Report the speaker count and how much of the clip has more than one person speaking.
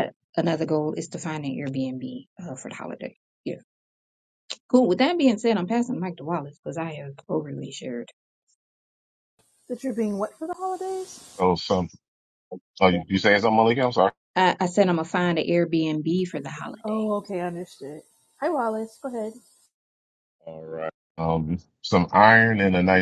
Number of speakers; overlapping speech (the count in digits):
3, about 1%